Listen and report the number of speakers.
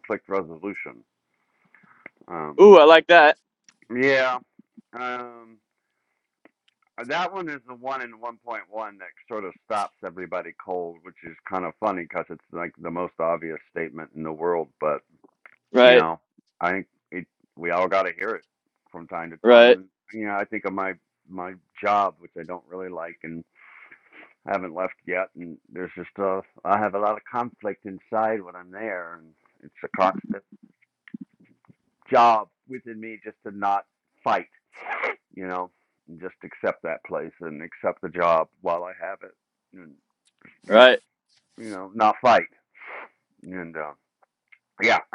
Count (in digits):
2